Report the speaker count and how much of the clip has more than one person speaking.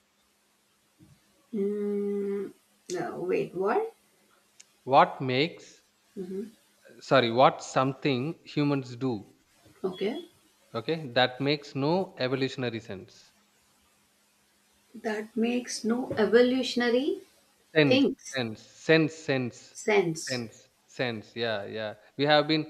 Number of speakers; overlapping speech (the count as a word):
two, about 1%